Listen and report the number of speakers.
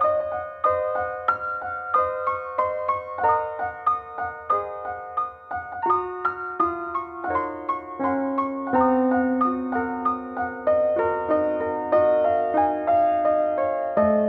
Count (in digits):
0